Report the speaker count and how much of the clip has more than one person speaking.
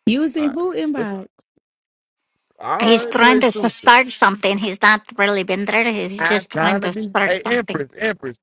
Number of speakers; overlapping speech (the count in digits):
3, about 33%